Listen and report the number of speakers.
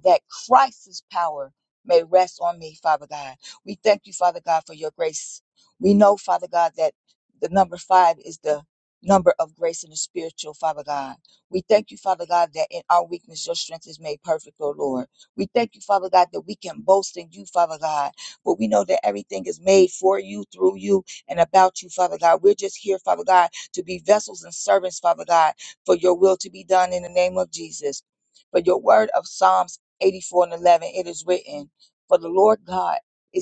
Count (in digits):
1